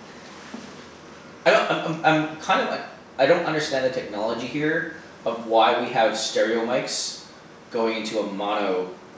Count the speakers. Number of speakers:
1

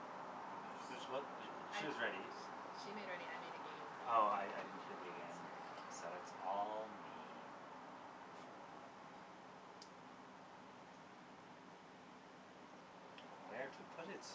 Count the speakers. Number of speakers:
2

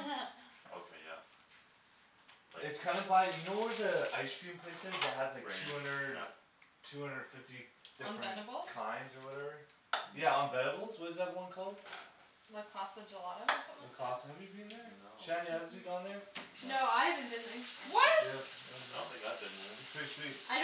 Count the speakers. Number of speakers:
4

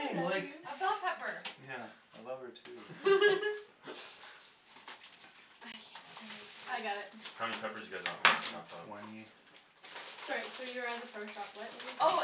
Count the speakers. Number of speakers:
4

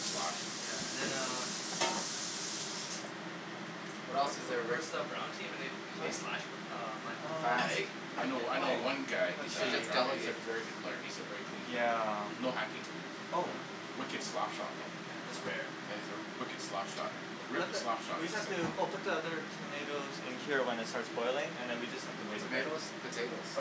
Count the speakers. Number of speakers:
4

